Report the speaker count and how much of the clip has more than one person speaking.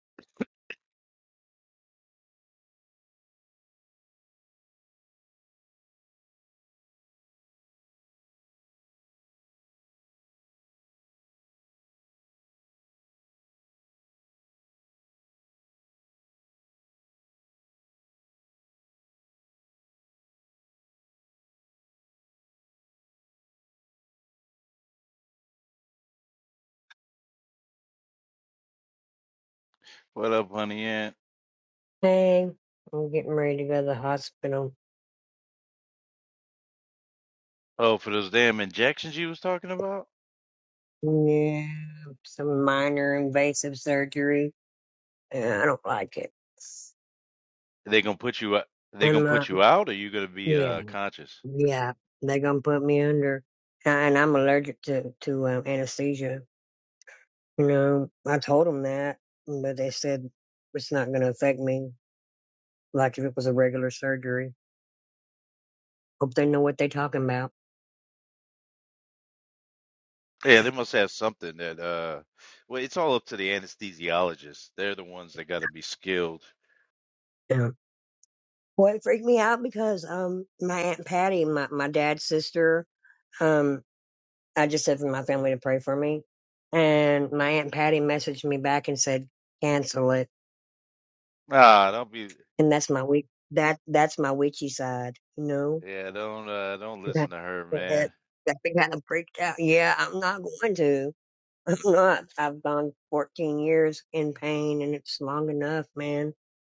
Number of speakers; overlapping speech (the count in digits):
2, about 1%